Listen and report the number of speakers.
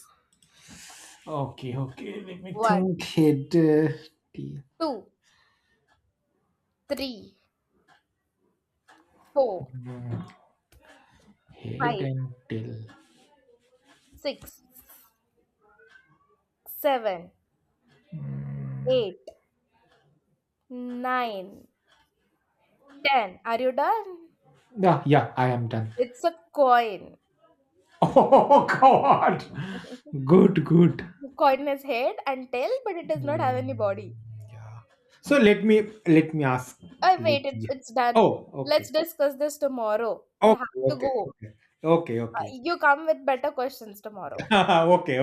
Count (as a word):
two